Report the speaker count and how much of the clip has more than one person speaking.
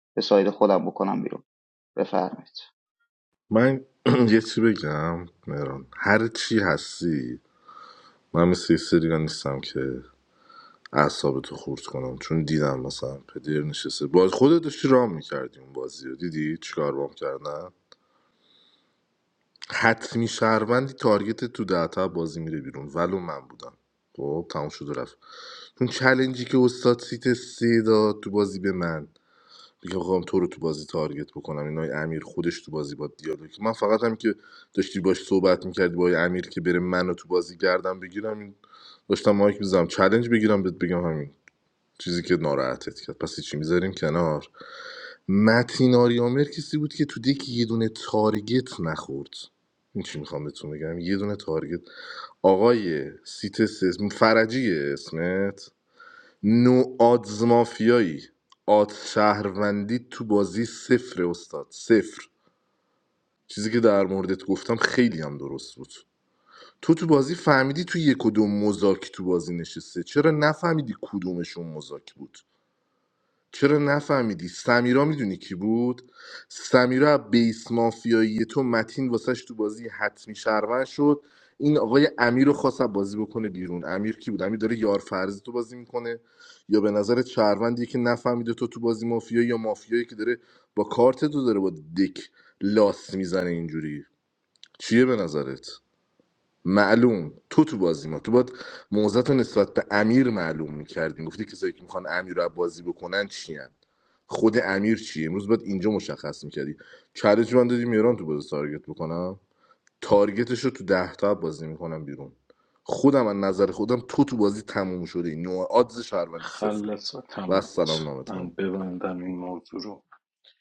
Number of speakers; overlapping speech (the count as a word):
three, about 1%